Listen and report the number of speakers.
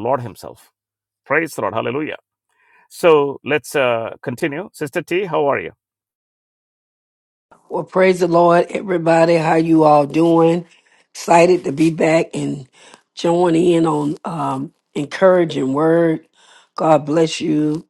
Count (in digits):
2